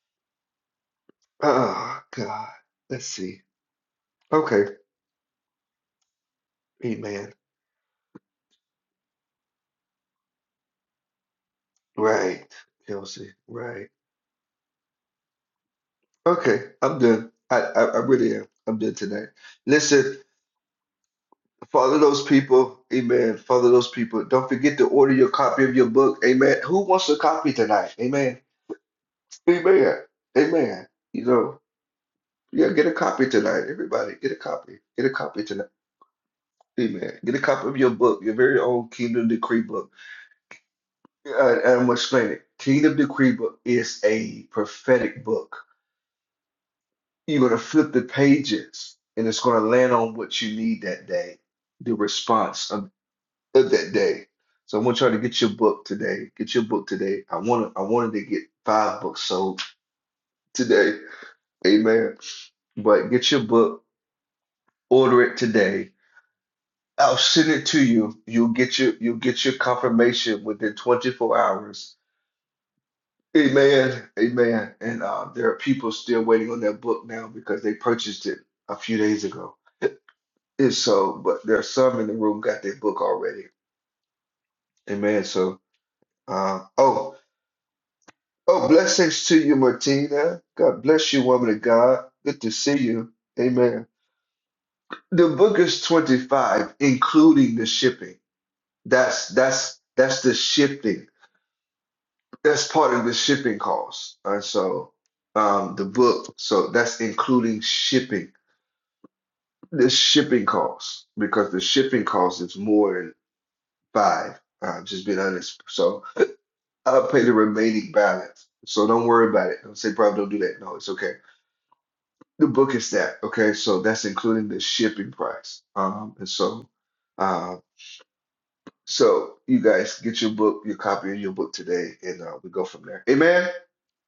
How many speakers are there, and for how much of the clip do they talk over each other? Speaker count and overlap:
1, no overlap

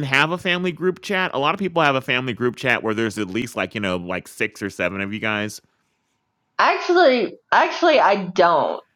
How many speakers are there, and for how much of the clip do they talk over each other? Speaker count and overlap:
2, no overlap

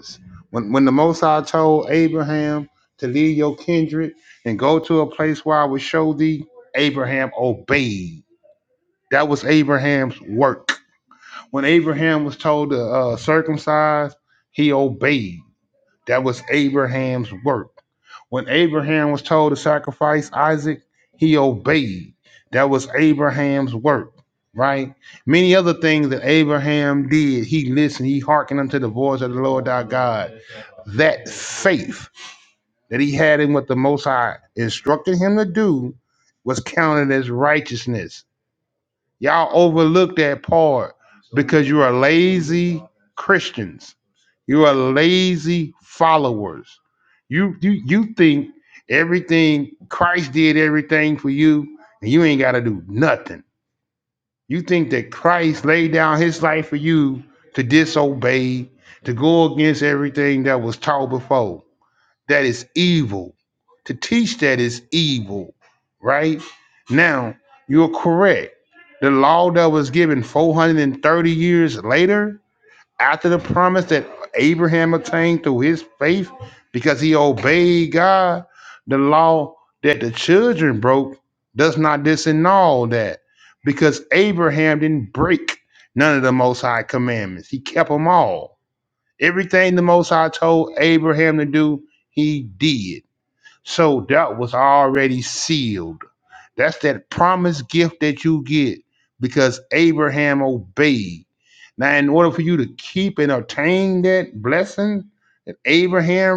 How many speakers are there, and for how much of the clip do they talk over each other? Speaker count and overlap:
1, no overlap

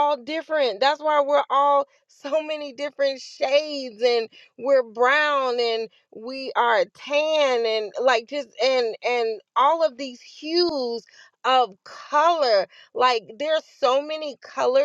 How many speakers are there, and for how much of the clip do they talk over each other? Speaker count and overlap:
1, no overlap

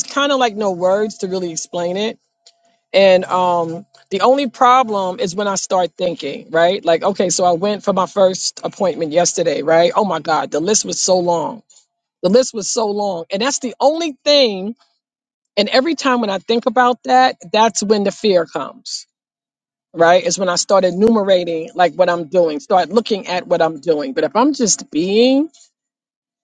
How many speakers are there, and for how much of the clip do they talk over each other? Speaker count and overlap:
1, no overlap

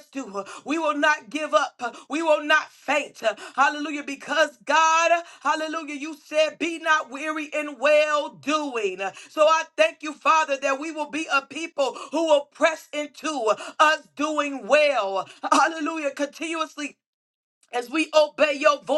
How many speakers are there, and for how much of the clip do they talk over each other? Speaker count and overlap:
1, no overlap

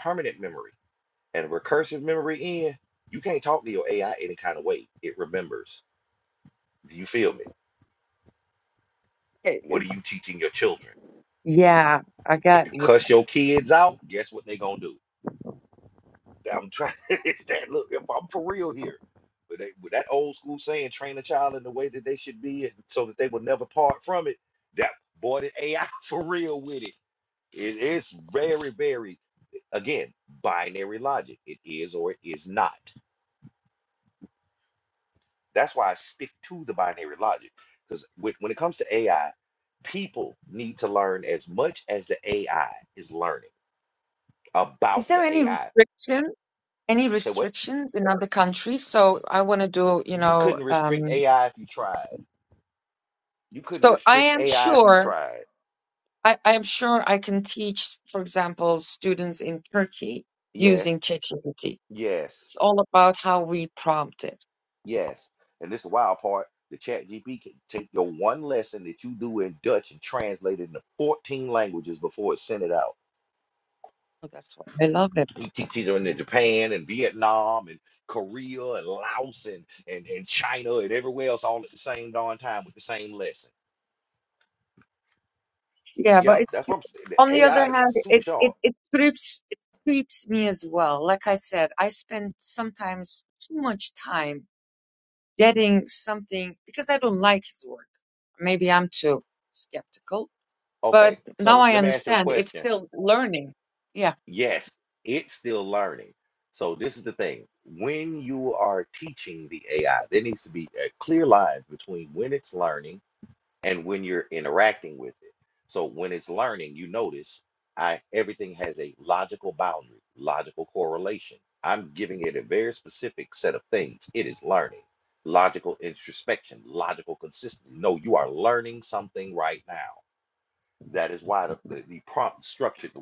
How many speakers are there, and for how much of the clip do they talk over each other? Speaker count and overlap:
2, about 6%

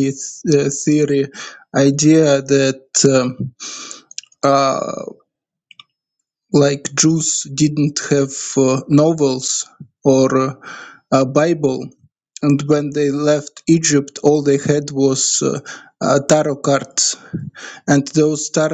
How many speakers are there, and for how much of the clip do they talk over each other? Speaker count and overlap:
1, no overlap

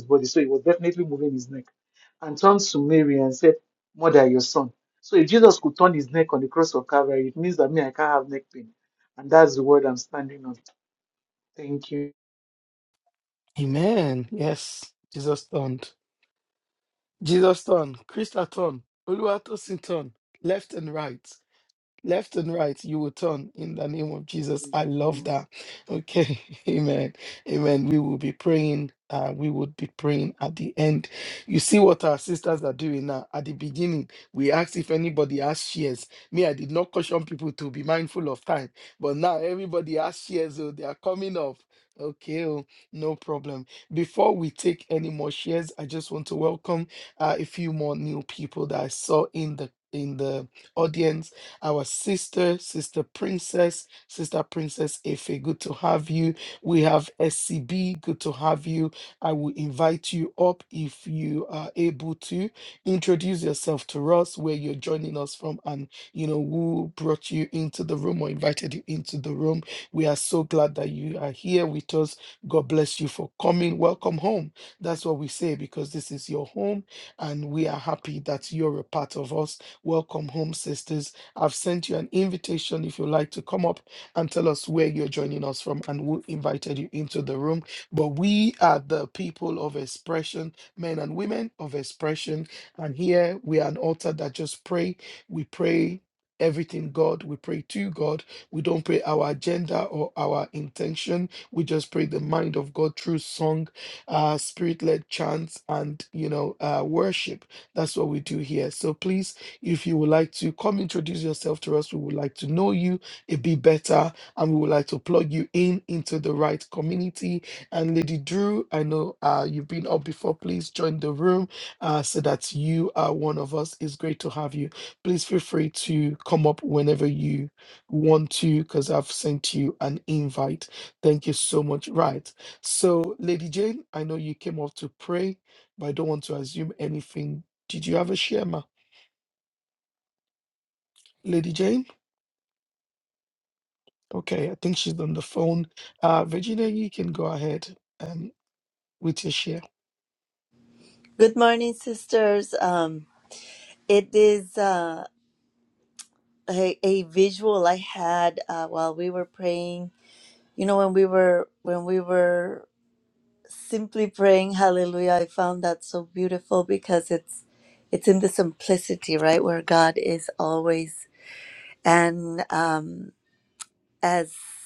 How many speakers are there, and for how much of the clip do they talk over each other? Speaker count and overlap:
3, no overlap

